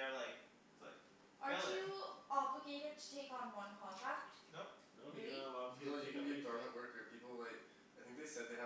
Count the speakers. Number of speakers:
4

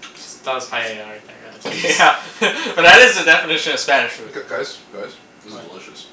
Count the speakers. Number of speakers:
3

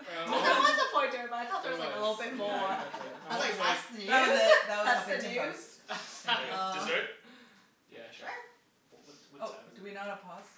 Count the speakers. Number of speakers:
4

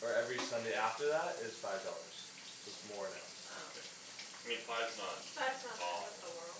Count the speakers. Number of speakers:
3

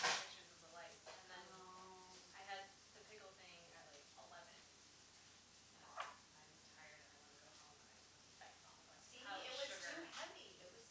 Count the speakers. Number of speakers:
2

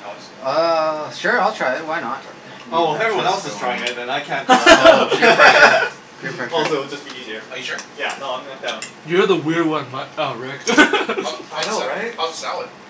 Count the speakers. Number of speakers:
4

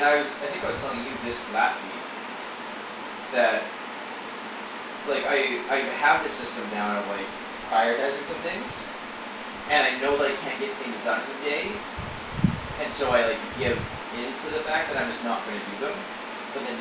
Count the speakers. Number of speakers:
1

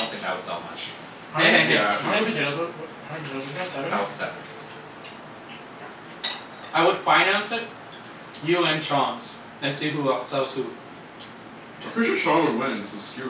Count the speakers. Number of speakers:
4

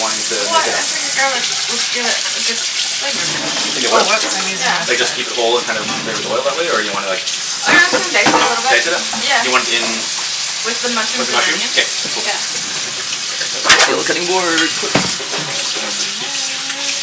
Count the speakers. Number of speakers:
3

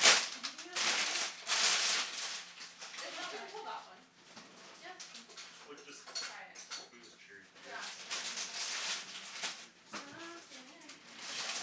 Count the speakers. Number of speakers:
3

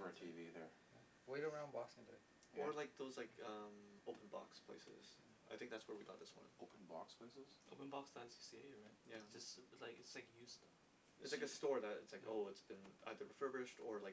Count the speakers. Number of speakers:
4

